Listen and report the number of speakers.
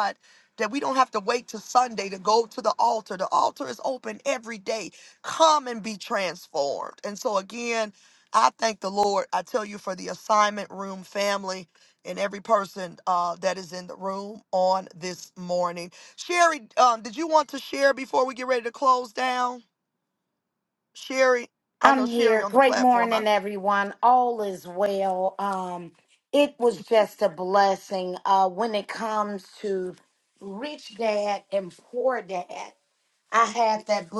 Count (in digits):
2